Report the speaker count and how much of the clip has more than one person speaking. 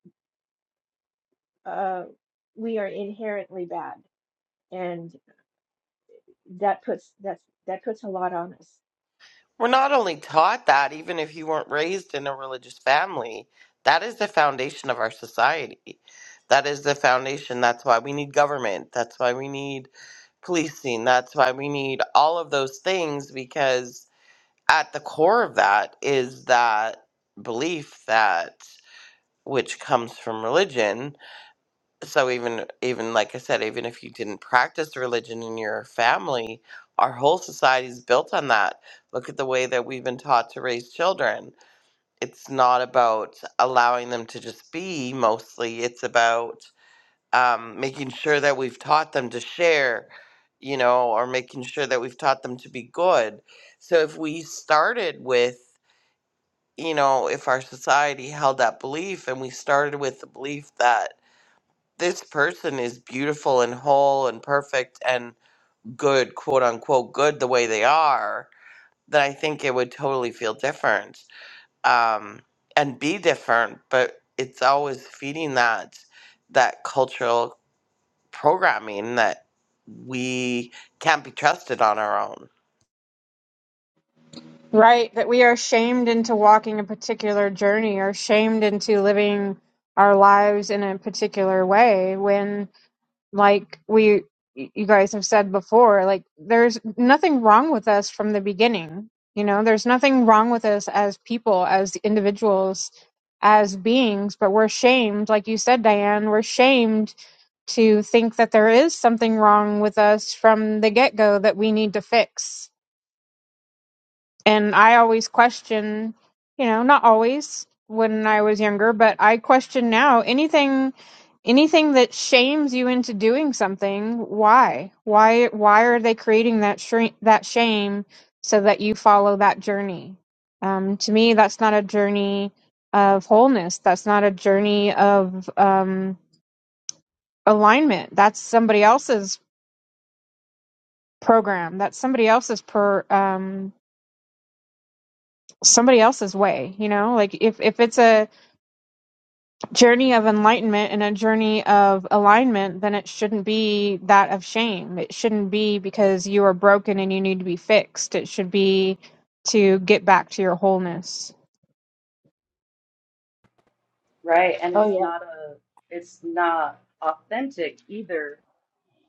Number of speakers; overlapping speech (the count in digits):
4, under 1%